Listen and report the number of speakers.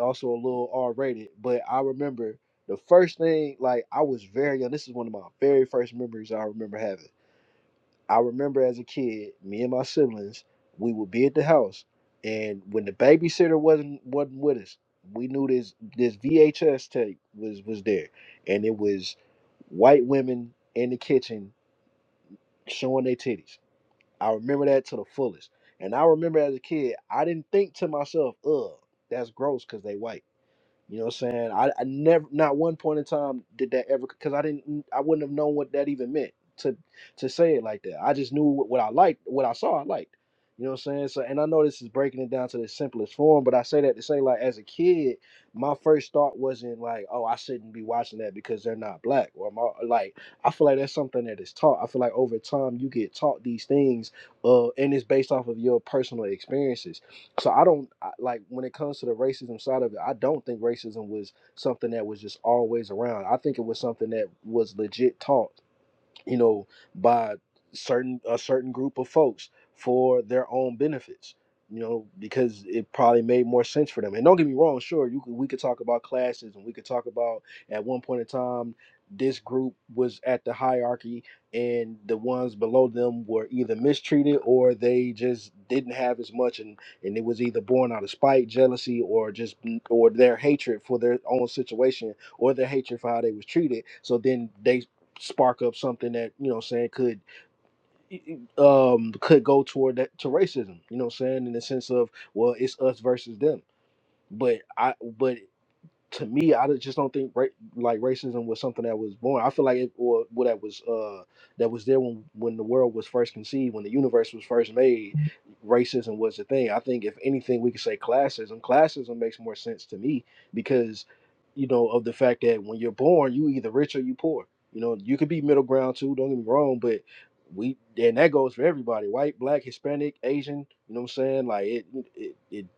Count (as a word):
one